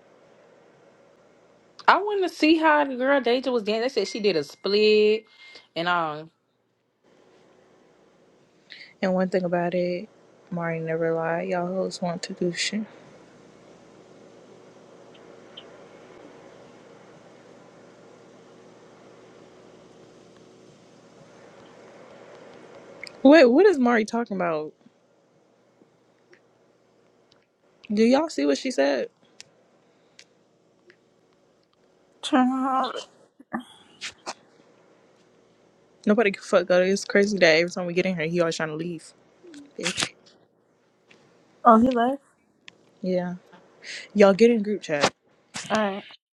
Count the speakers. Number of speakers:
three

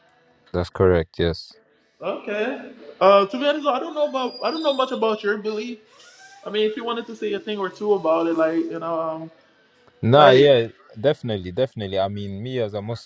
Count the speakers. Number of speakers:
two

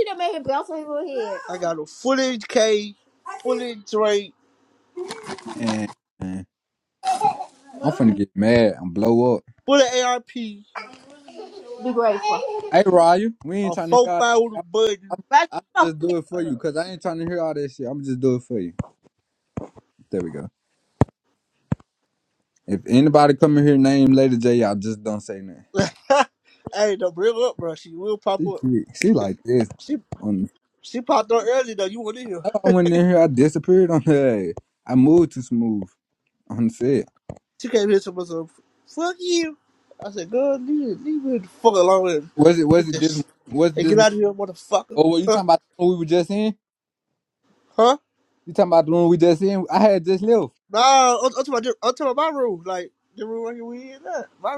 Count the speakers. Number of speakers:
three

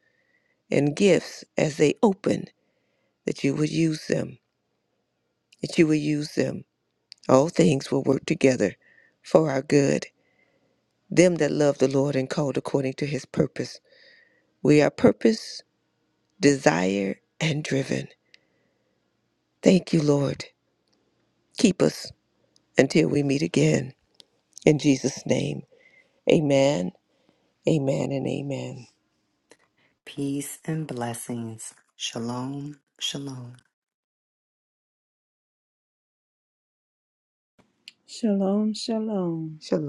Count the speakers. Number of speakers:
three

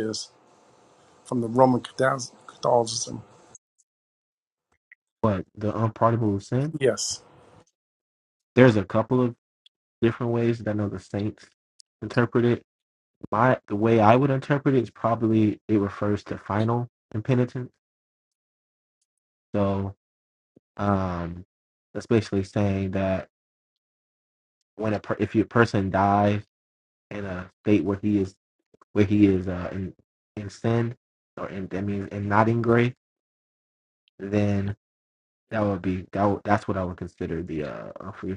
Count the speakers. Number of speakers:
two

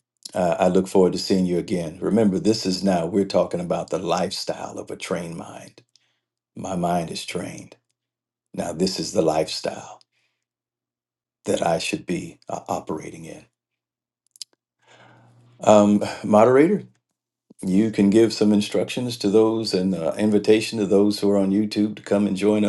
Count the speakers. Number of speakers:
one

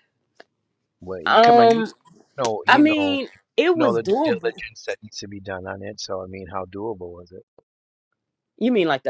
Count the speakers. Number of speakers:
two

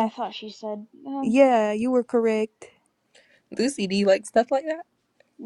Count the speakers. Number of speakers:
three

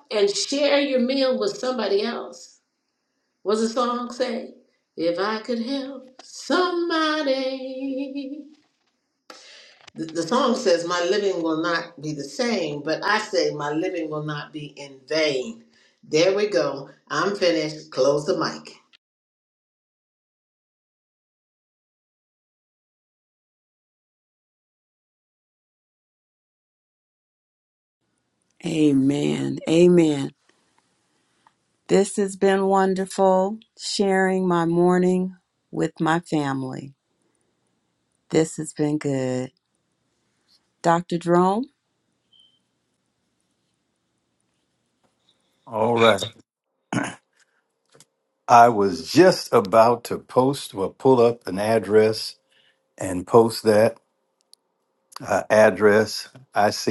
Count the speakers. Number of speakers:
three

